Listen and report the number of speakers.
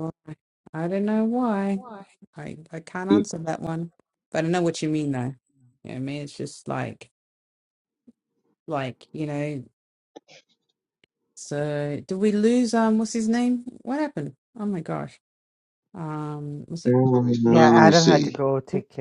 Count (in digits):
3